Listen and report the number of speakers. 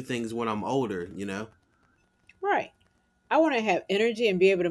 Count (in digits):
2